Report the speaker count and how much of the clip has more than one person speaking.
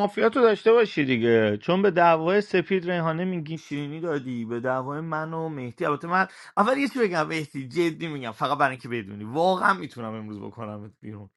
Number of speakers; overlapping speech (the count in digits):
1, no overlap